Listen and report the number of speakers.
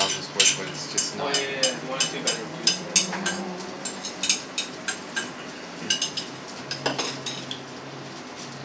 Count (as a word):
two